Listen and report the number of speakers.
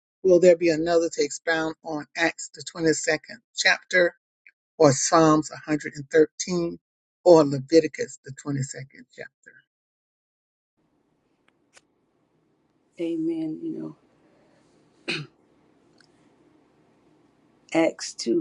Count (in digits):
2